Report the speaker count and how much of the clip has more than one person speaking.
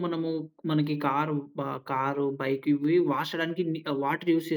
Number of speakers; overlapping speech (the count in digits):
1, no overlap